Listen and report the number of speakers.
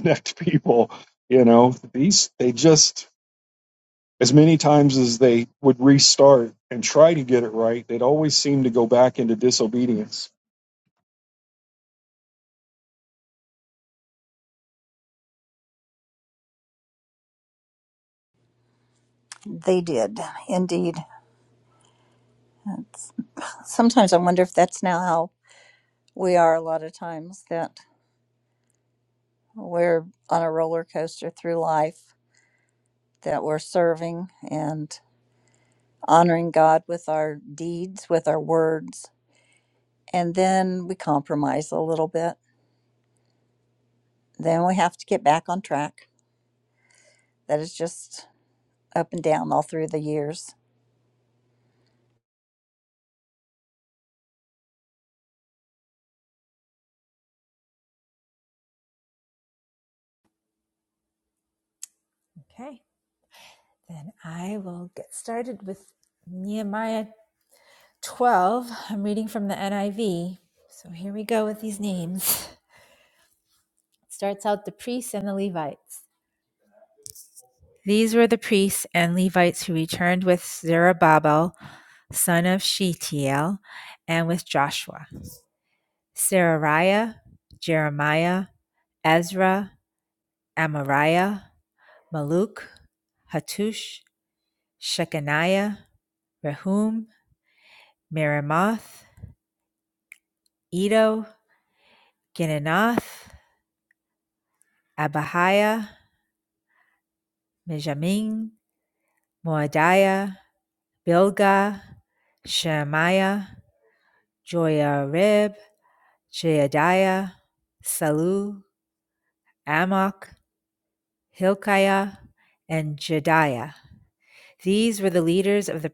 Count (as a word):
three